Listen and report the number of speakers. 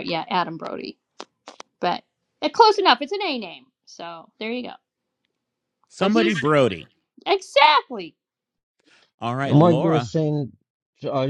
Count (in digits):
3